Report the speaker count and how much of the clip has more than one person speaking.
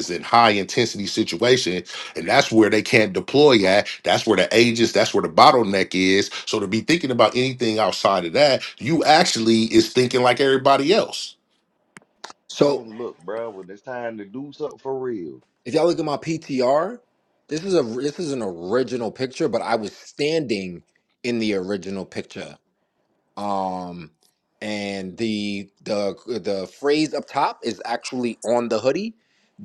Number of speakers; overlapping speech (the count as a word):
three, about 1%